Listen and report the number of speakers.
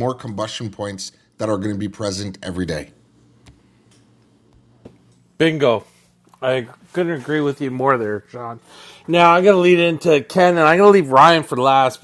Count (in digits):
2